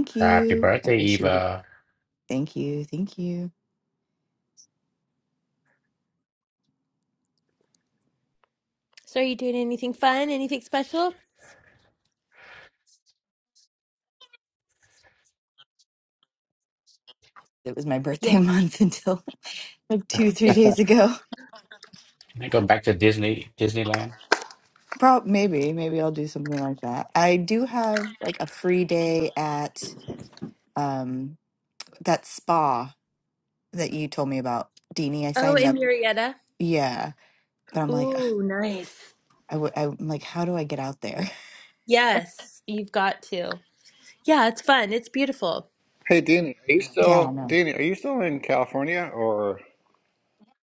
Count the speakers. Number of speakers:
4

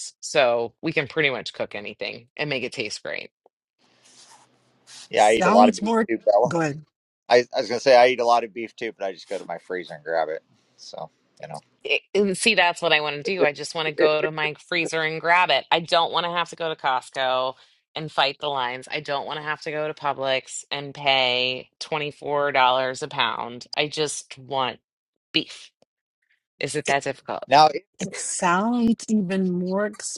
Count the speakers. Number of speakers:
3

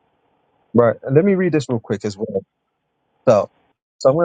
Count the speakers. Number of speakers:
1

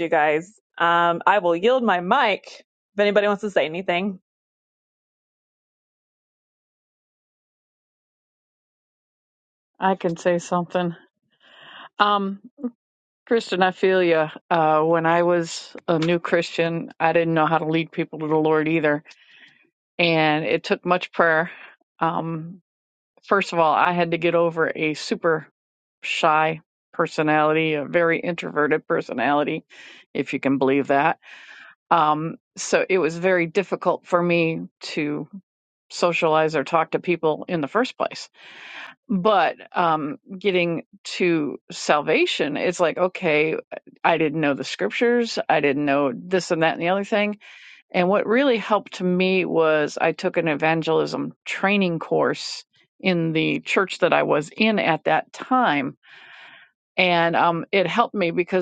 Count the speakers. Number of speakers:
2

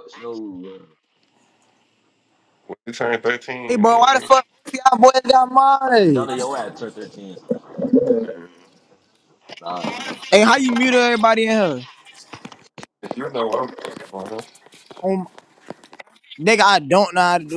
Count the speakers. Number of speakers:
3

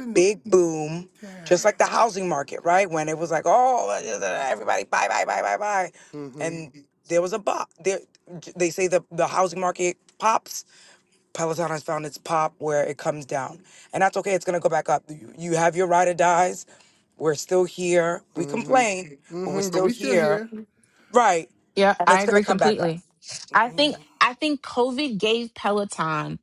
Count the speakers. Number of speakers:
3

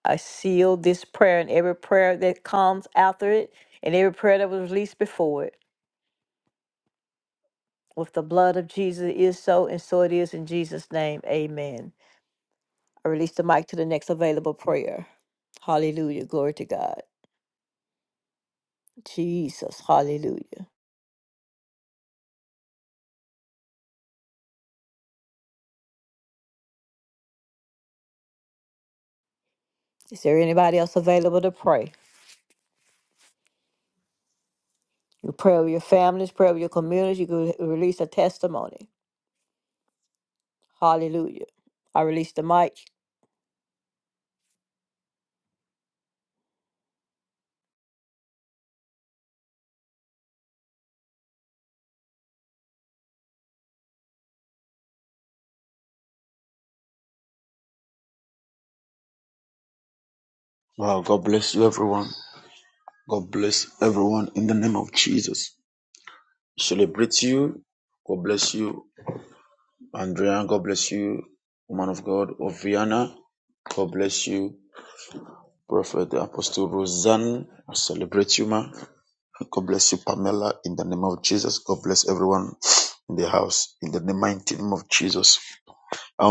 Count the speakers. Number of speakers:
2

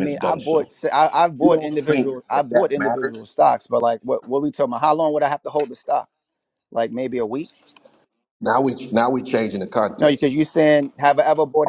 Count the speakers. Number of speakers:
2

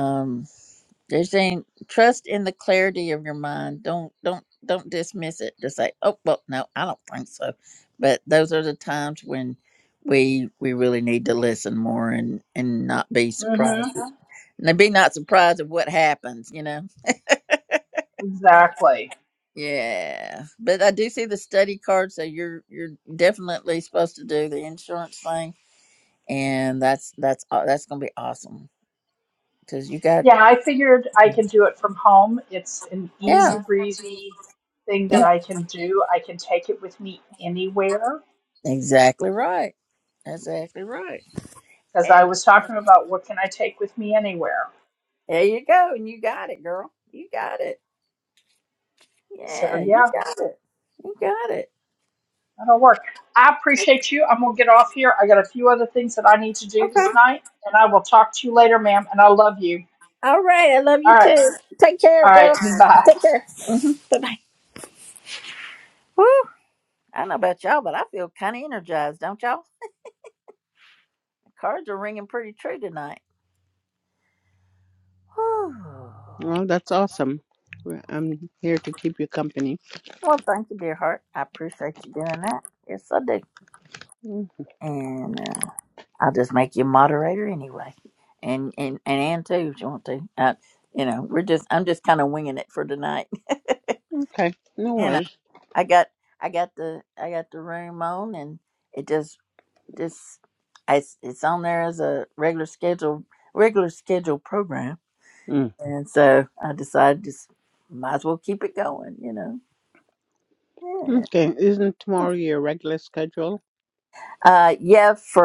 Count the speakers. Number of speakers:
3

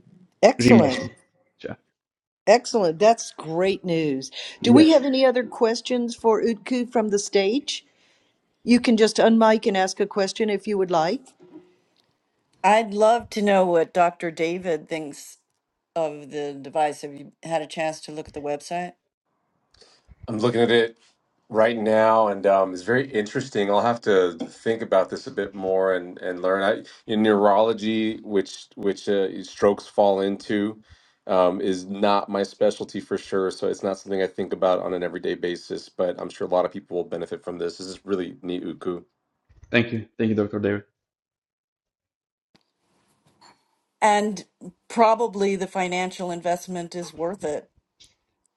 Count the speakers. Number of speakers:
4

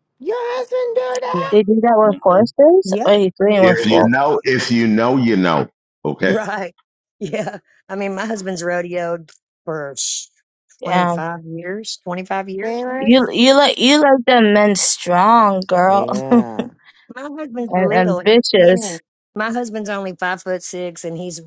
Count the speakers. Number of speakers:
4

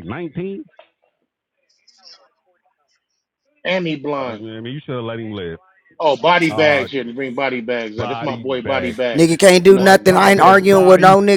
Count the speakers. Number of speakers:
3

